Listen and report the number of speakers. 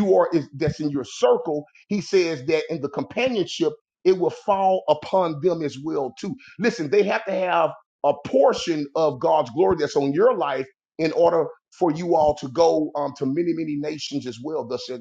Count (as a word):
one